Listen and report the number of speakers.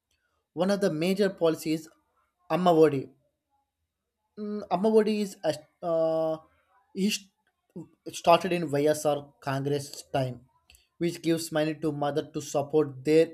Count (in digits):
1